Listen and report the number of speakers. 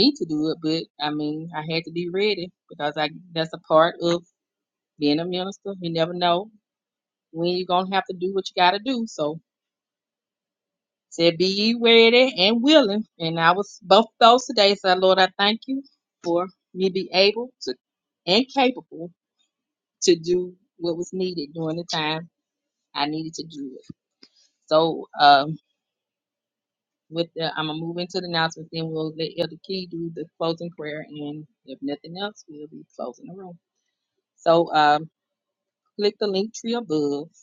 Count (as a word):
one